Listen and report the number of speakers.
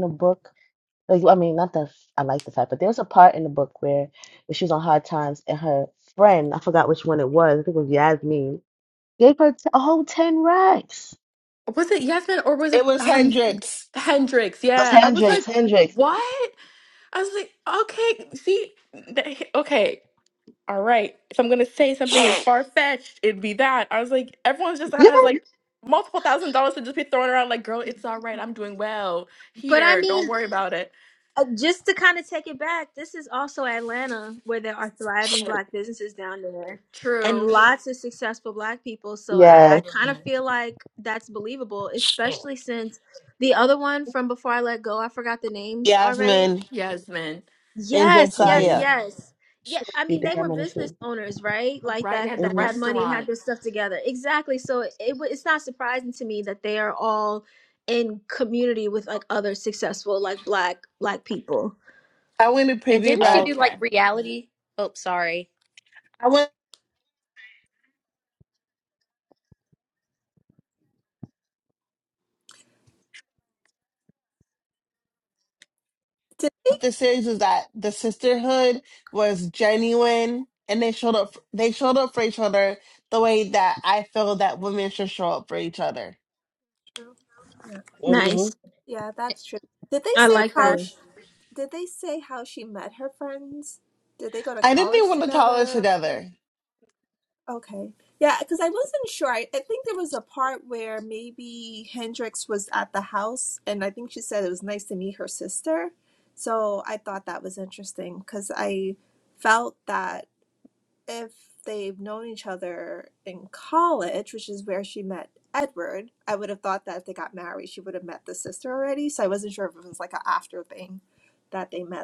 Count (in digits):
6